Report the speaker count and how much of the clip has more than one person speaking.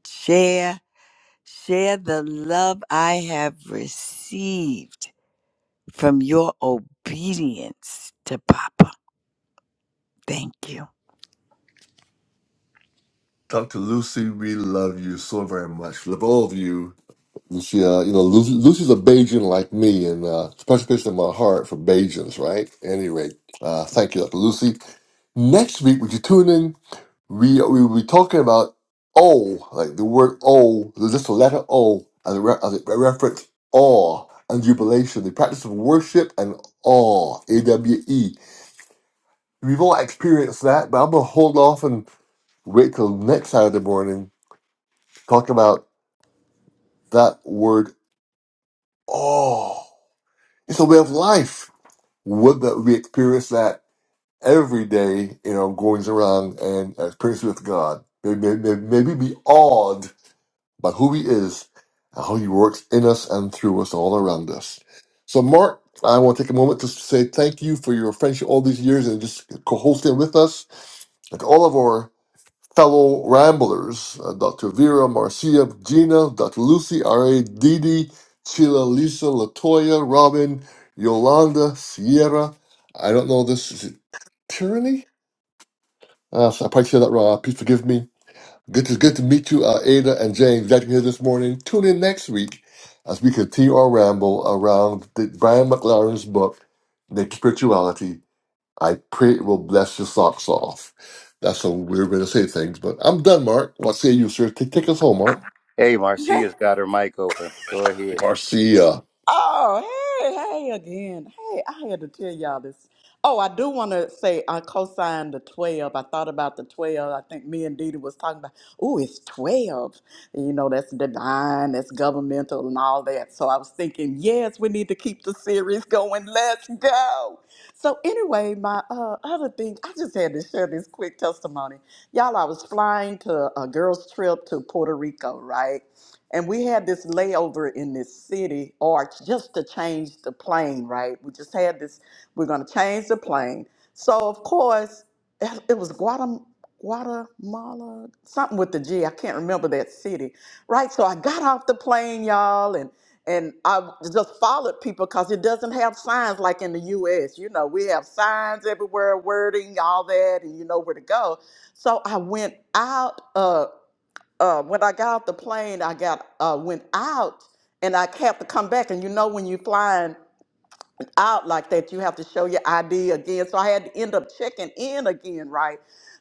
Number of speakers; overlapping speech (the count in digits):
4, under 1%